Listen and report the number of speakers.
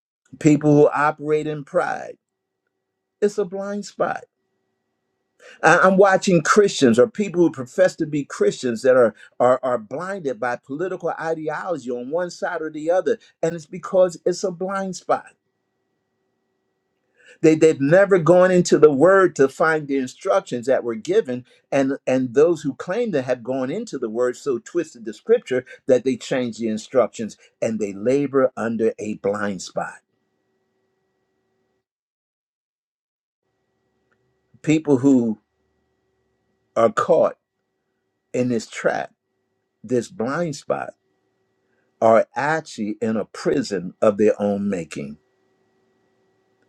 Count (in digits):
1